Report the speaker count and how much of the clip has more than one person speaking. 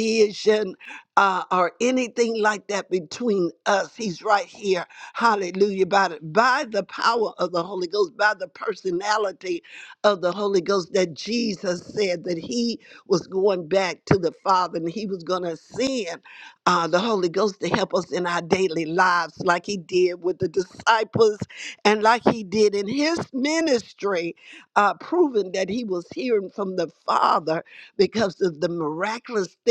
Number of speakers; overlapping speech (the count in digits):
1, no overlap